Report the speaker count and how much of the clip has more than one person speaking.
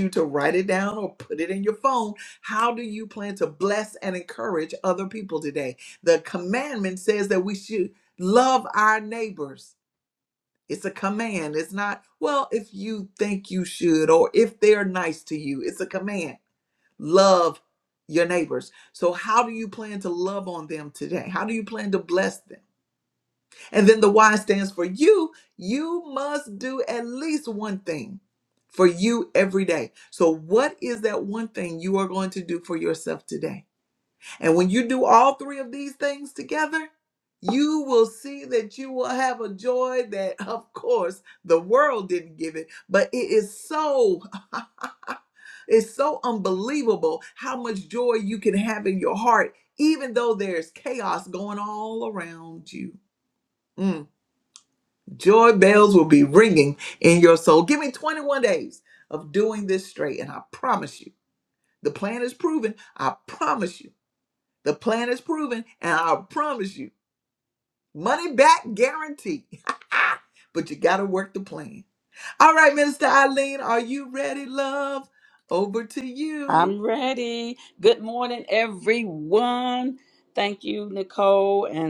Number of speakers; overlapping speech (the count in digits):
2, under 1%